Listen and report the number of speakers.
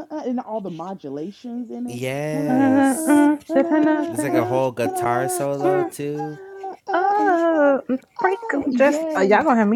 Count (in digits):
3